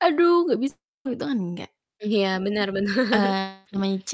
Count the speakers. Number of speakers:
two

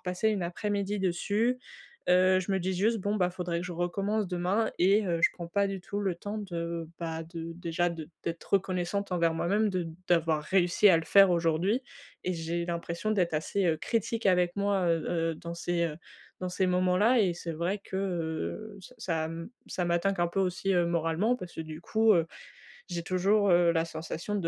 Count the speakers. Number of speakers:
one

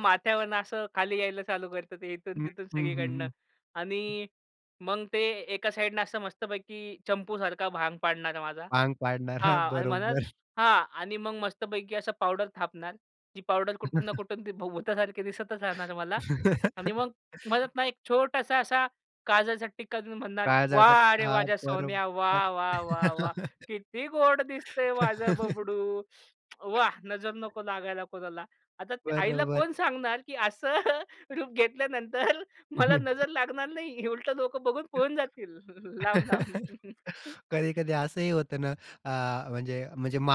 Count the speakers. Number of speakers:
two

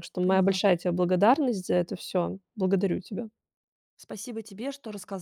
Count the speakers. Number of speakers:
two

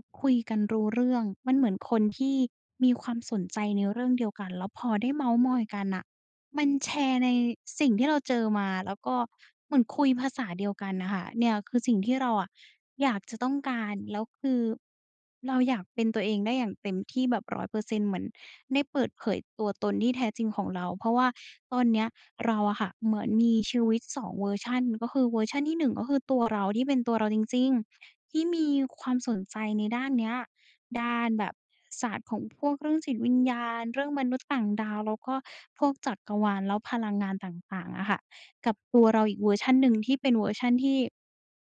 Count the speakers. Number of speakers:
one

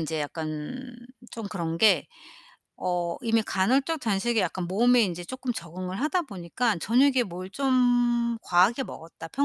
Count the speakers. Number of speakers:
one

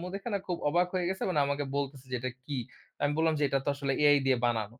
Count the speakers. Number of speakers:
one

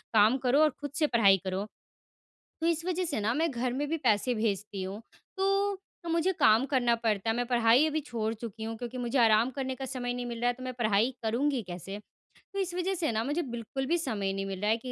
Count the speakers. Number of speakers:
one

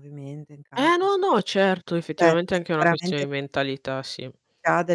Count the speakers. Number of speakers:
two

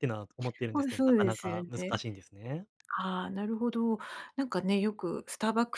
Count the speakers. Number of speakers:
two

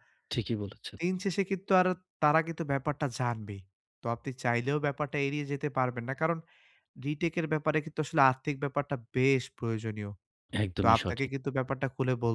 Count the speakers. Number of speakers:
two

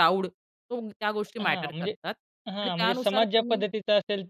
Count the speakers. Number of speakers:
two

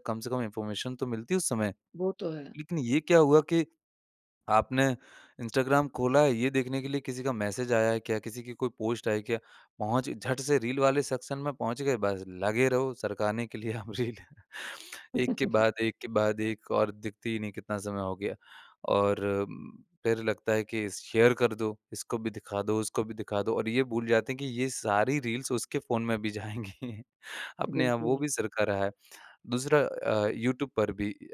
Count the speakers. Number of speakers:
two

